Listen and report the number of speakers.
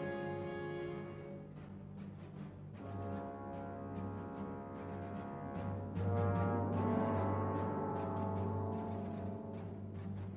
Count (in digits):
0